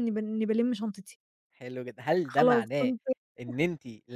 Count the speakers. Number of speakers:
2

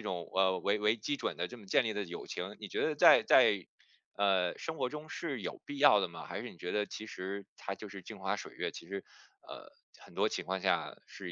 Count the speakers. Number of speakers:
1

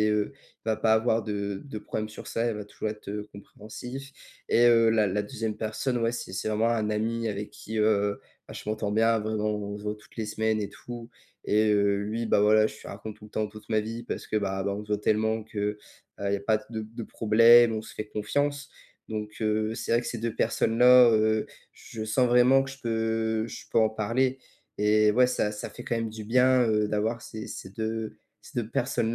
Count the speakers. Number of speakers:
1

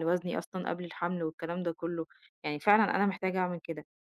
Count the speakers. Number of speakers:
1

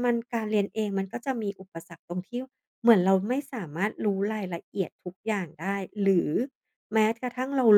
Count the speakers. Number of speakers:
1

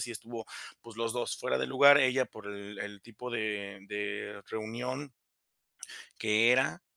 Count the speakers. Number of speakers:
1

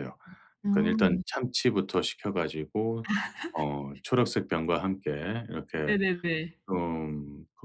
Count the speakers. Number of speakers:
2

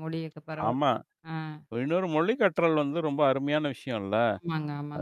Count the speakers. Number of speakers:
2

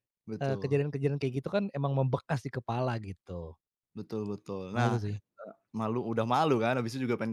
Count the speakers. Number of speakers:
2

